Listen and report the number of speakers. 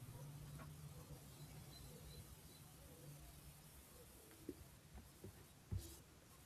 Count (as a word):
zero